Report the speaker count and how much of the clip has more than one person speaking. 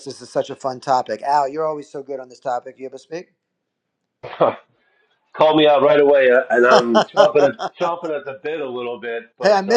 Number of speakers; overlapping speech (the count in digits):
2, about 5%